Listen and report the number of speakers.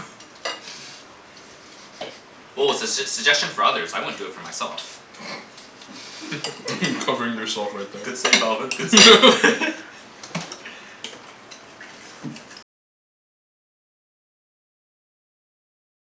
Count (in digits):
2